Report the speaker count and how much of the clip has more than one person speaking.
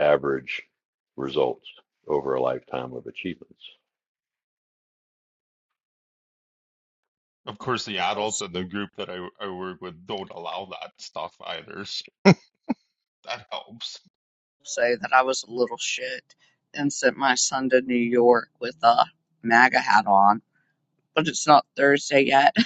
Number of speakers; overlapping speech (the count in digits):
3, under 1%